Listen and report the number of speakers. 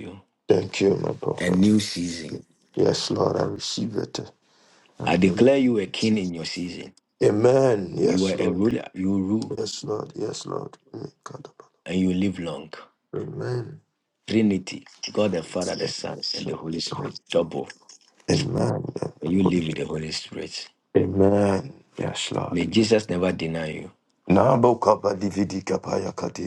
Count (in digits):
2